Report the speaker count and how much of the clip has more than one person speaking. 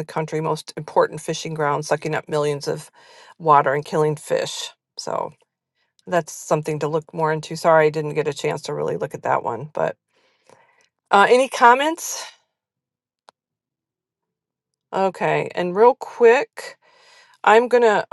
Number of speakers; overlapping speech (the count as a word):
one, no overlap